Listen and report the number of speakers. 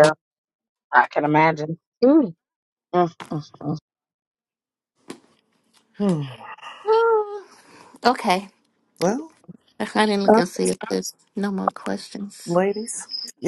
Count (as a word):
three